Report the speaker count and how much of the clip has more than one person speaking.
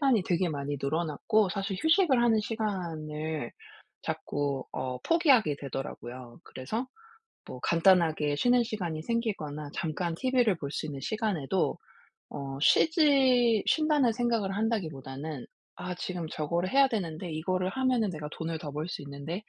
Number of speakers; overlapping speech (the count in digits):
1, no overlap